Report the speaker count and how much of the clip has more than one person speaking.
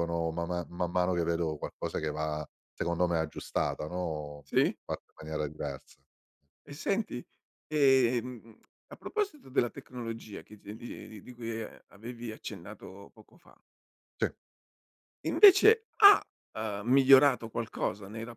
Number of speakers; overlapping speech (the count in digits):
2, no overlap